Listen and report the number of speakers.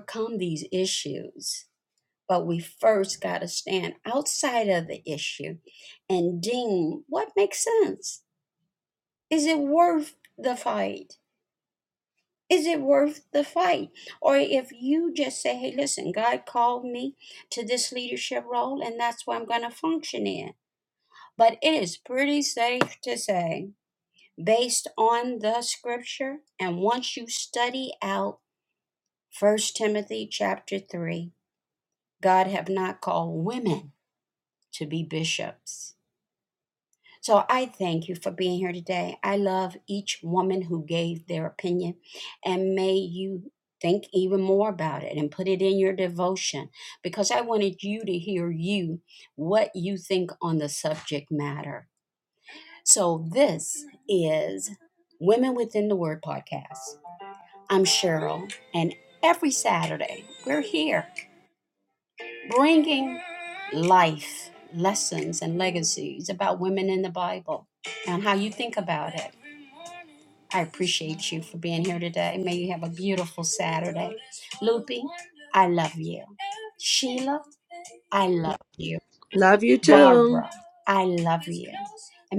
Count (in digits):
2